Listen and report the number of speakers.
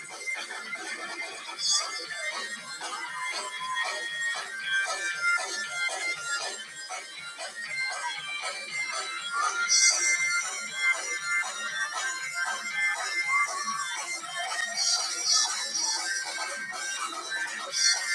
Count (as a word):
zero